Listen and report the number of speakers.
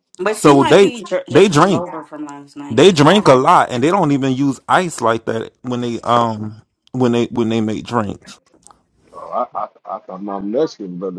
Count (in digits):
3